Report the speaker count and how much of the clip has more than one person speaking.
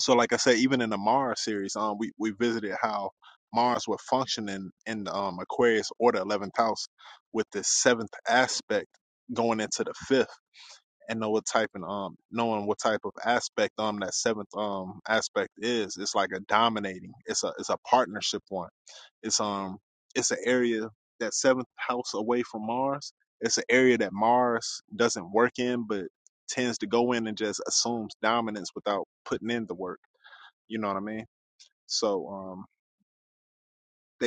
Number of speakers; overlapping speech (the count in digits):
1, no overlap